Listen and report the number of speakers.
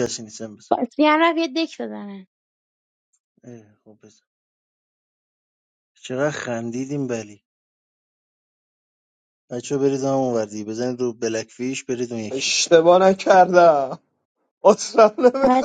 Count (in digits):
3